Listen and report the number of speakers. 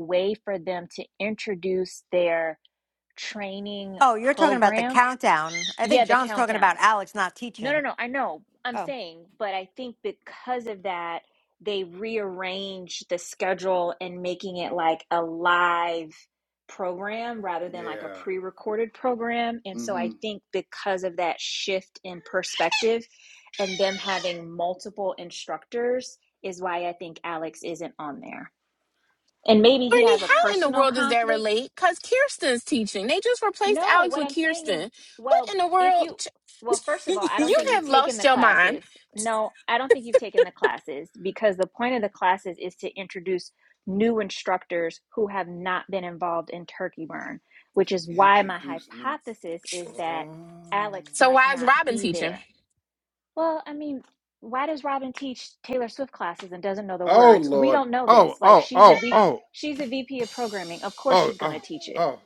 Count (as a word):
four